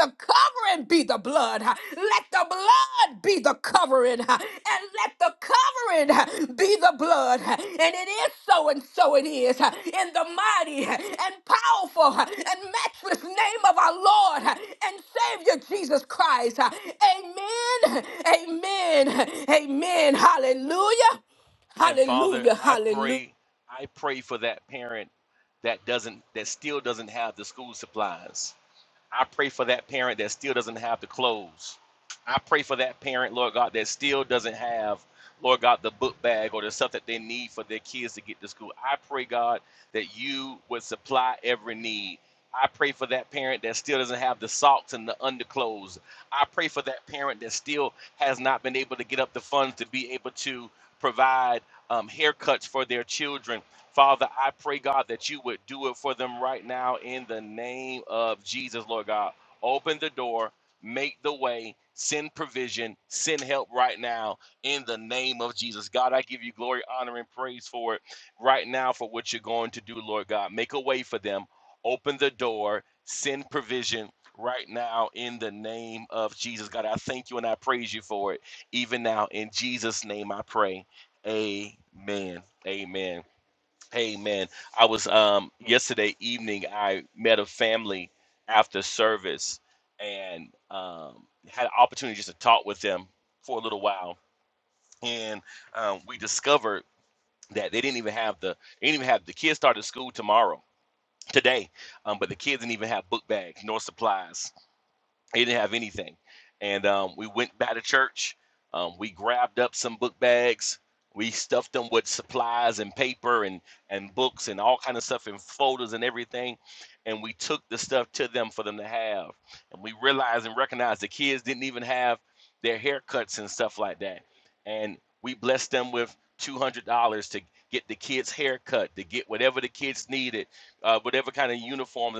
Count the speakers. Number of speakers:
two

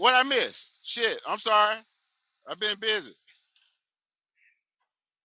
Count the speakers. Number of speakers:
one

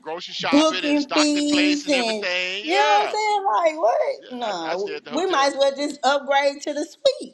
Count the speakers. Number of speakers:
two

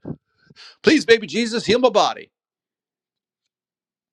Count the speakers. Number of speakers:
one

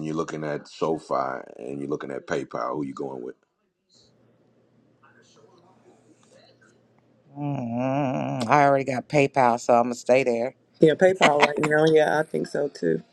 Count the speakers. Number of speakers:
three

